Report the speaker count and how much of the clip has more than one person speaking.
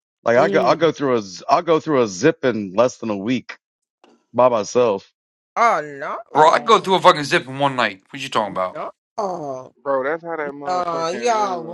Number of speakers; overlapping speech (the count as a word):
four, about 16%